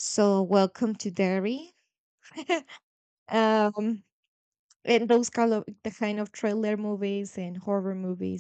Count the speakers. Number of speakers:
1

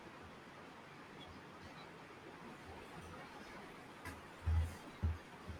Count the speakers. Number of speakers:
0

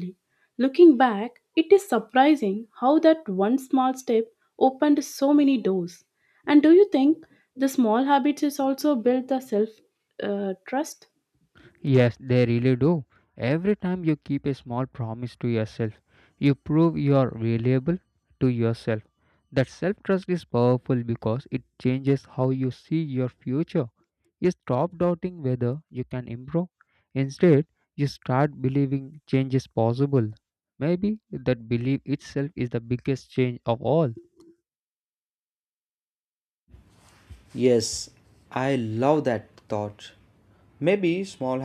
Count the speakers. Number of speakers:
3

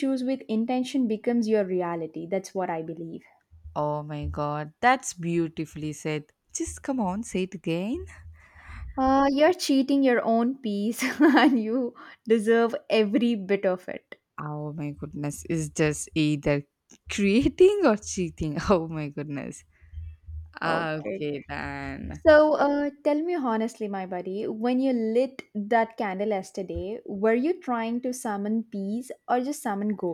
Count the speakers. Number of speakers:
2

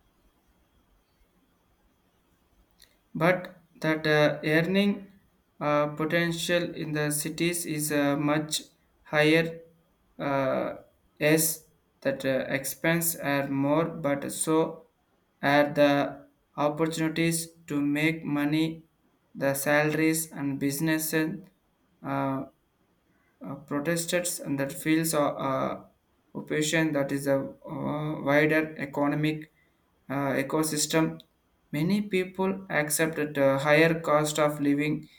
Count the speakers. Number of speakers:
1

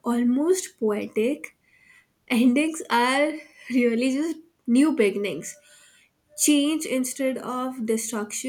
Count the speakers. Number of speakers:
1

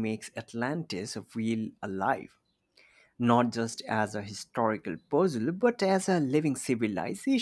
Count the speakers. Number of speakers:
1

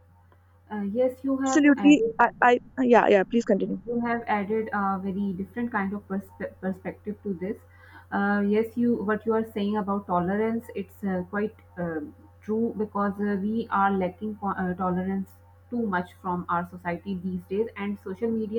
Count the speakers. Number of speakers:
2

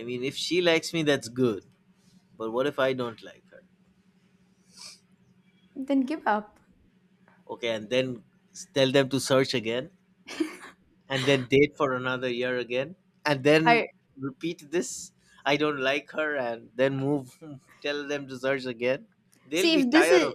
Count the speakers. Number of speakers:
2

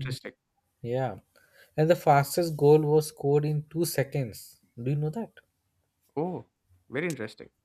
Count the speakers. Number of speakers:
2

